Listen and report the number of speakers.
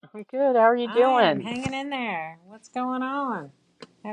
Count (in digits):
2